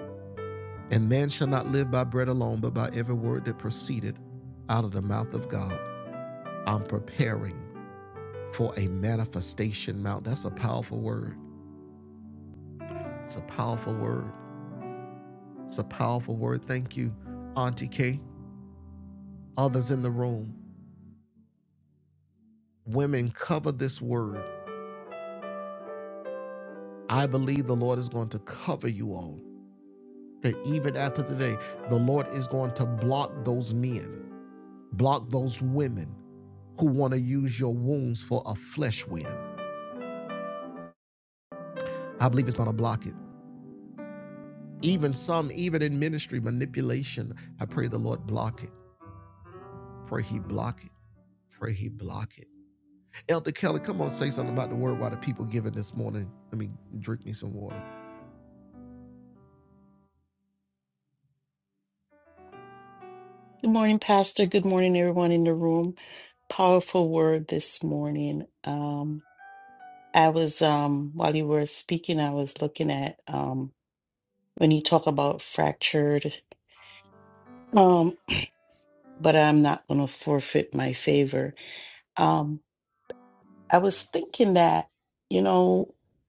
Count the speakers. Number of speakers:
2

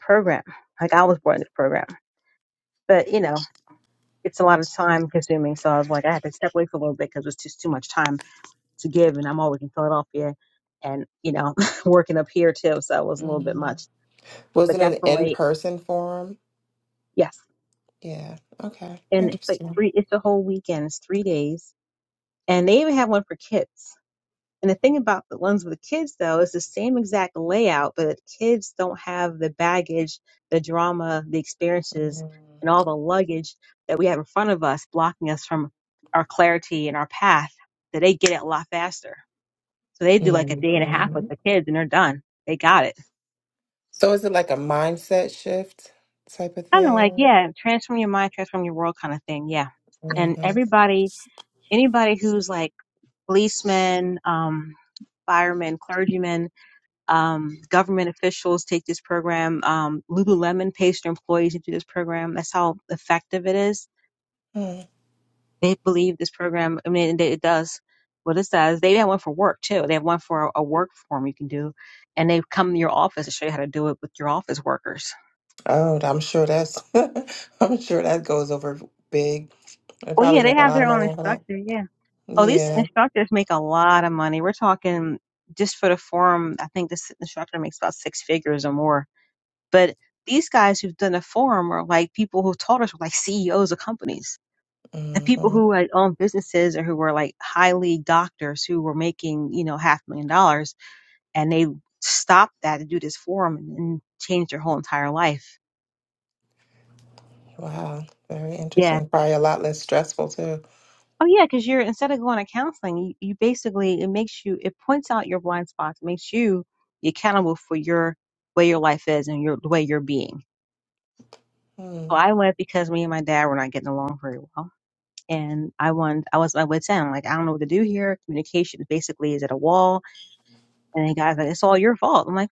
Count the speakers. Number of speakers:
2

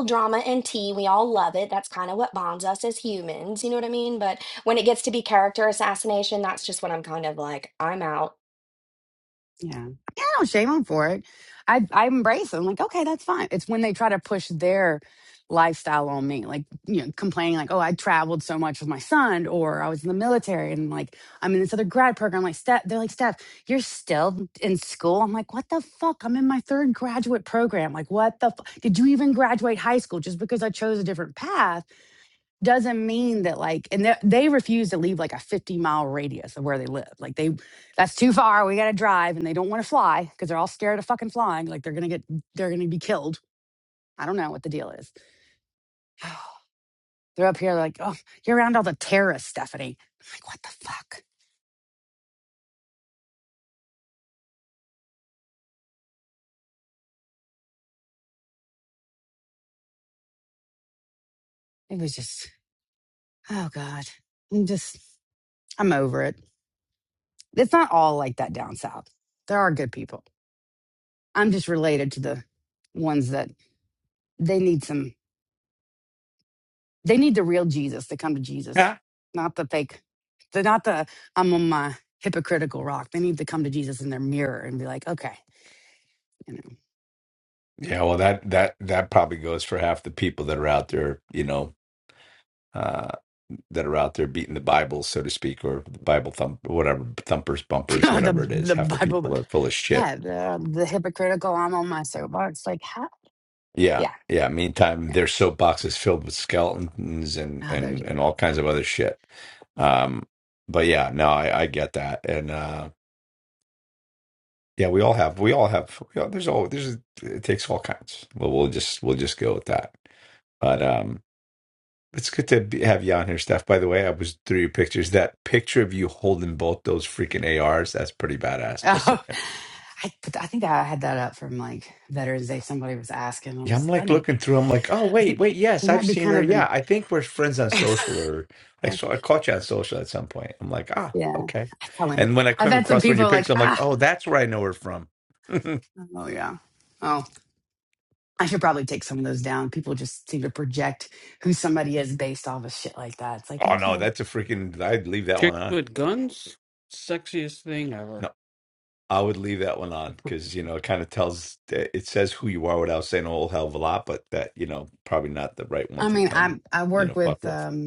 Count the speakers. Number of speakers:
4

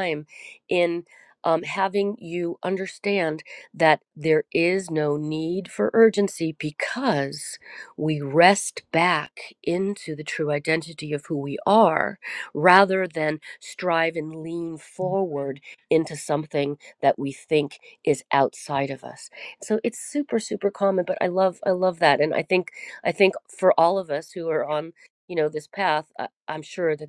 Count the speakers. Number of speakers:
1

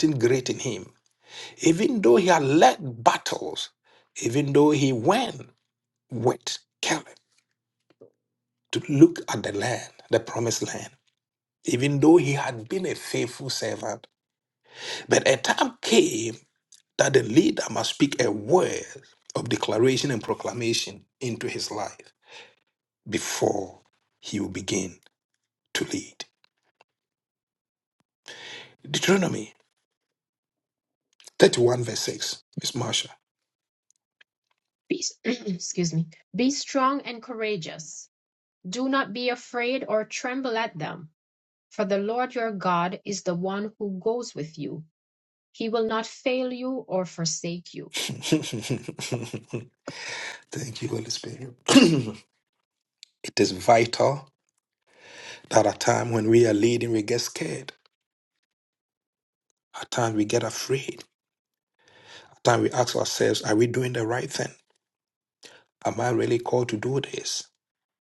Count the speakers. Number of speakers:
2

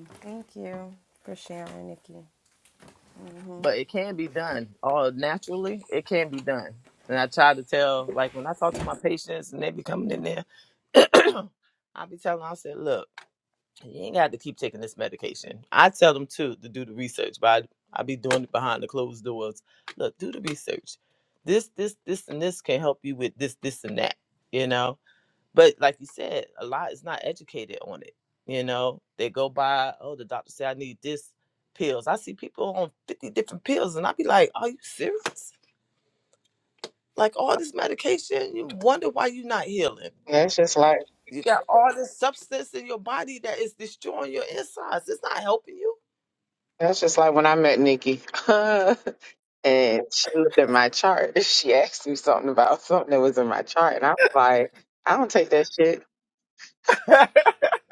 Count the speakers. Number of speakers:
3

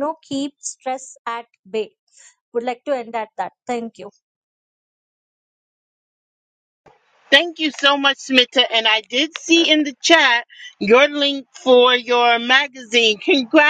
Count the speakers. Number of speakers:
2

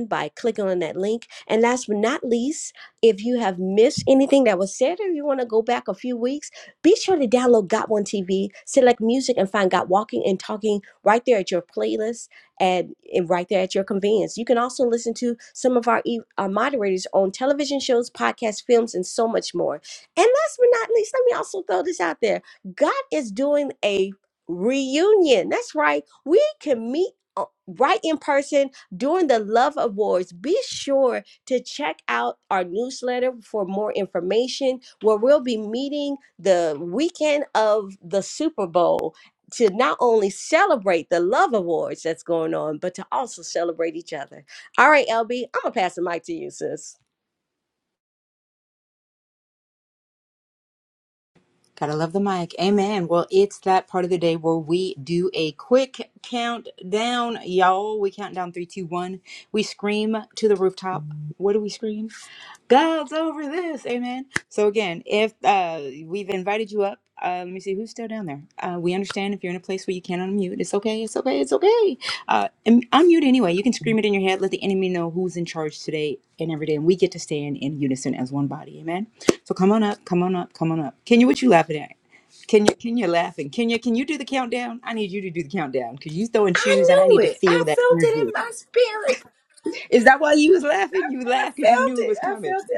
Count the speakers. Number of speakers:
3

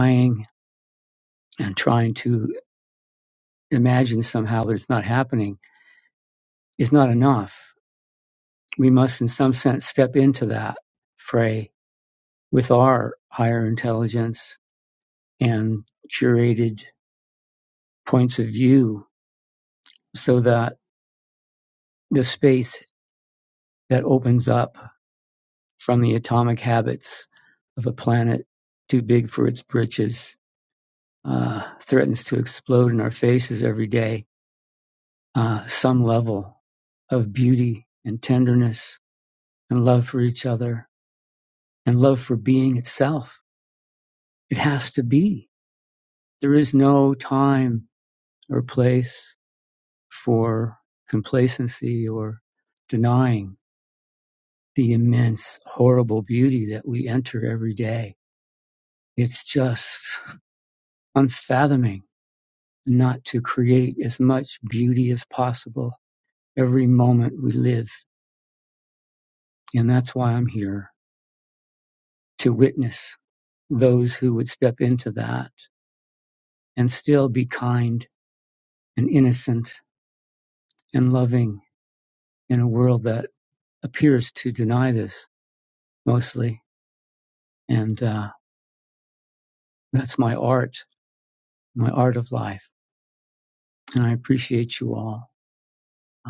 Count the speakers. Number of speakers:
1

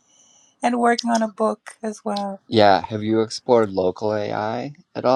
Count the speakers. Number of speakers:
2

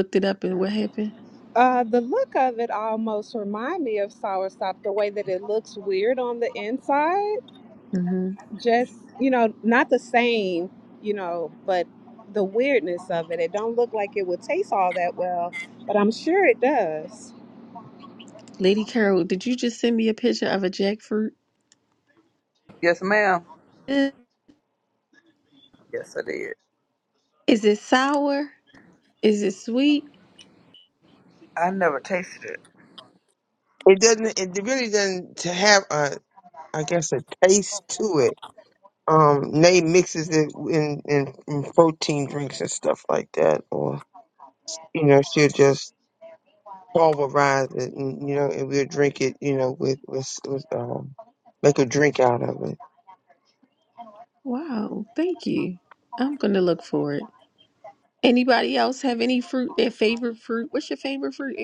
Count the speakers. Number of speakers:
4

